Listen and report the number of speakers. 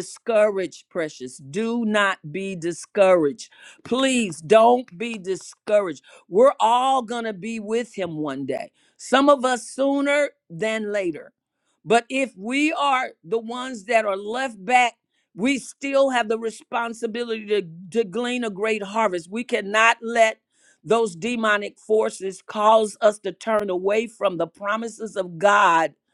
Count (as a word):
one